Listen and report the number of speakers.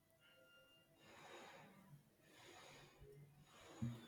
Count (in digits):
0